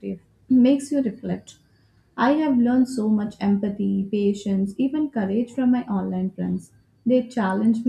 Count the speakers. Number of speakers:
1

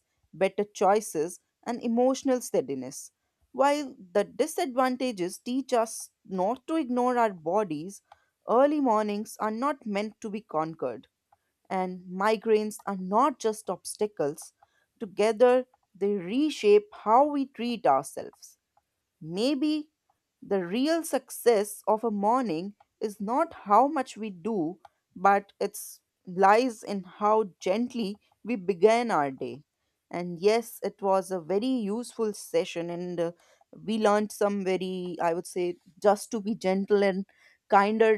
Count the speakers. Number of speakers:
1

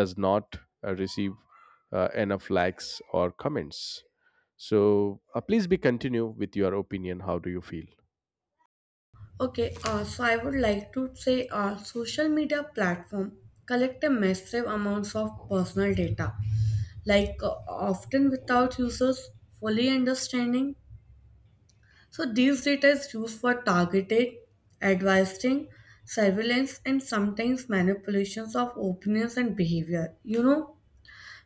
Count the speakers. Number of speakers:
2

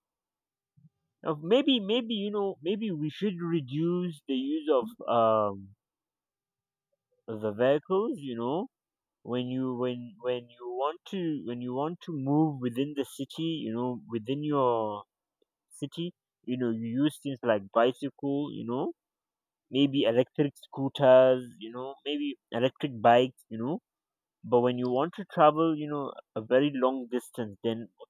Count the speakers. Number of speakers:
1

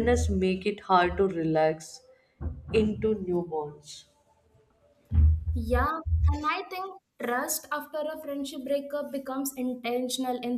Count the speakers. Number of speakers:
2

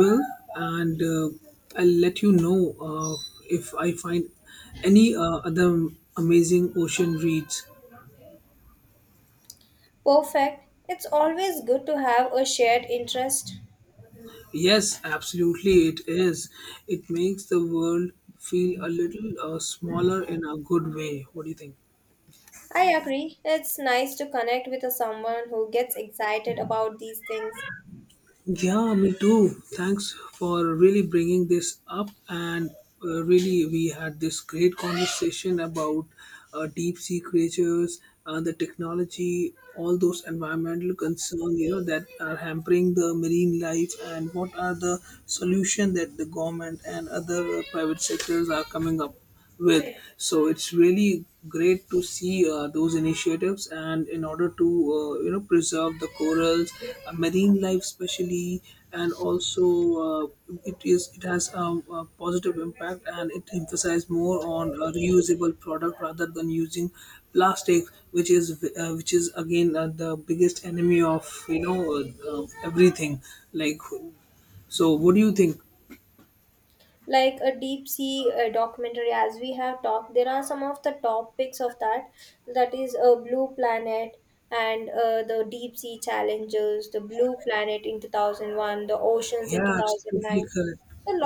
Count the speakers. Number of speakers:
2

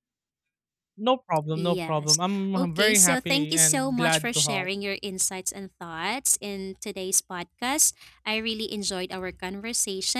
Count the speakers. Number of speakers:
2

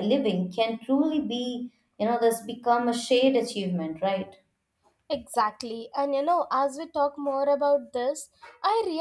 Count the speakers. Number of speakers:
2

